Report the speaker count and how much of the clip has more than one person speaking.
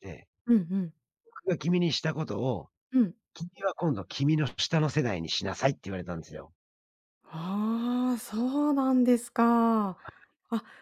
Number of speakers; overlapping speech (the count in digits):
2, no overlap